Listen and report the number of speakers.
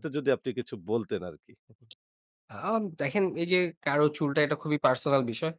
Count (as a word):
two